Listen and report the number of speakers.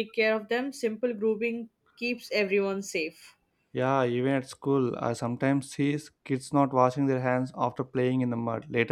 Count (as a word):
two